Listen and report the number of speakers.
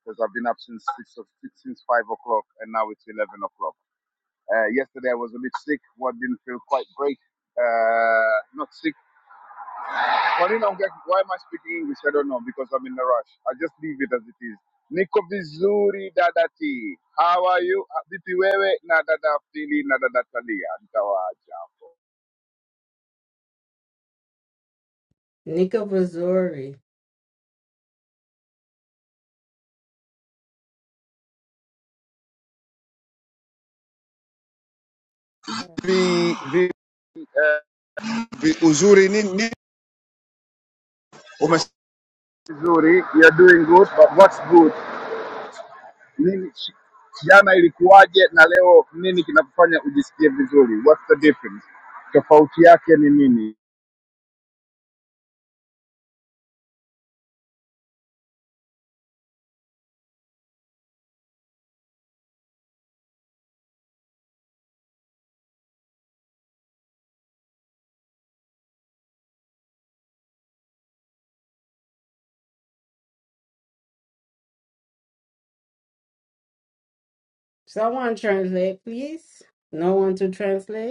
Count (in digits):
2